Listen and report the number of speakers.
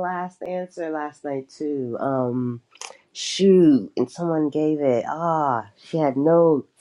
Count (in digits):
1